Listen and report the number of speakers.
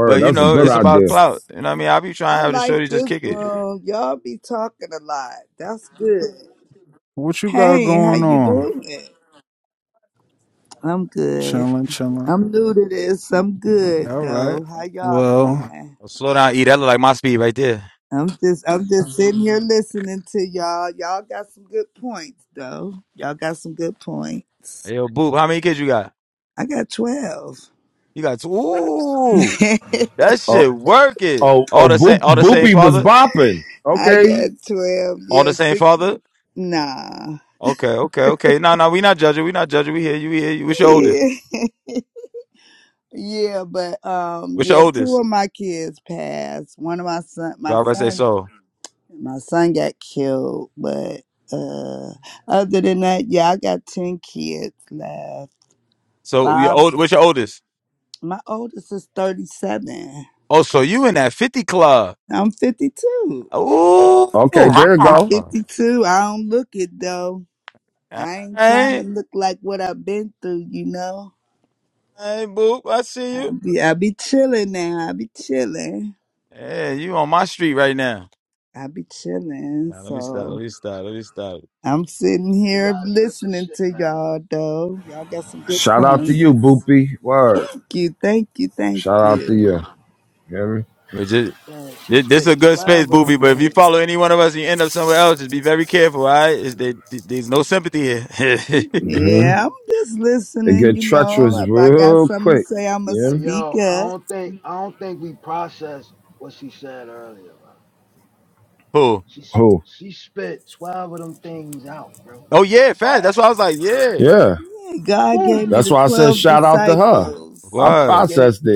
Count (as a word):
five